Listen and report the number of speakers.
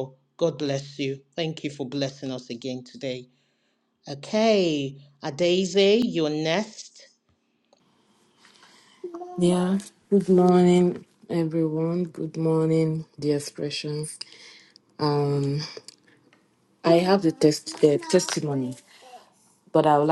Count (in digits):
2